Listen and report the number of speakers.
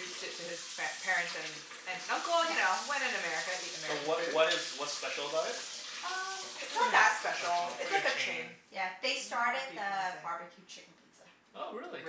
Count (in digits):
4